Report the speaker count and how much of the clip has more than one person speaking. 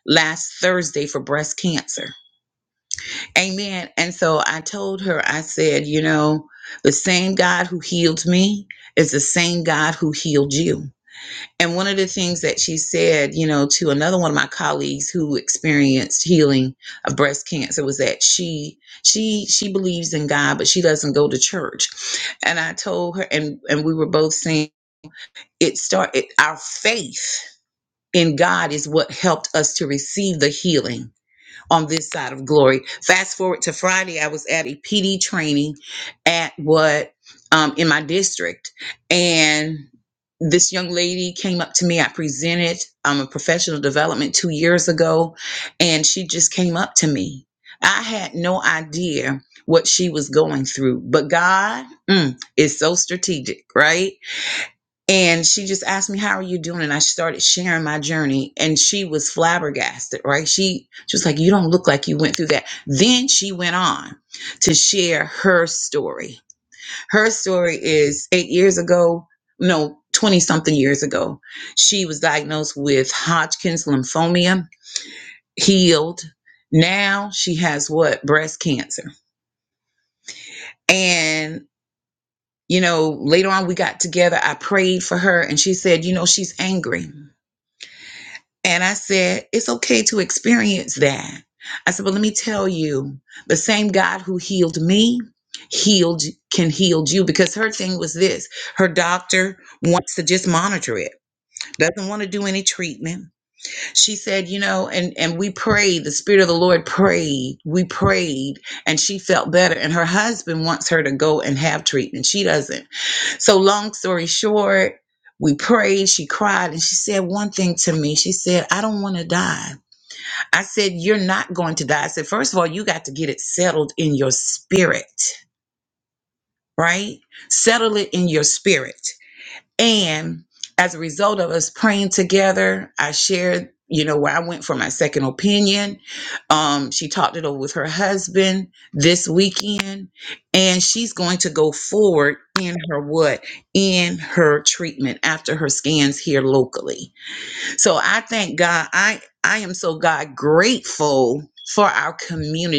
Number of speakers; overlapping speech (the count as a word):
one, no overlap